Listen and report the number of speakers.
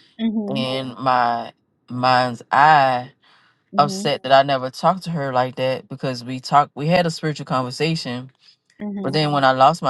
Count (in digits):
2